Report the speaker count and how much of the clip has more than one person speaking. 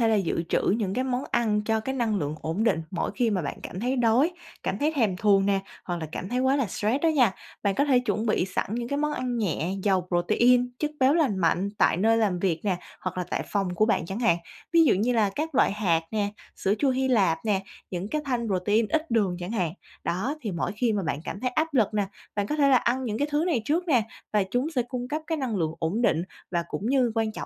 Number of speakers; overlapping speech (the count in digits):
1, no overlap